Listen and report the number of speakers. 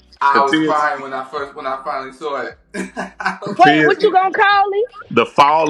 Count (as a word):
three